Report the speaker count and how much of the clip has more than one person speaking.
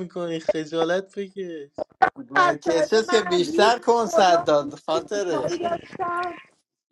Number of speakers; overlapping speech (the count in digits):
3, about 36%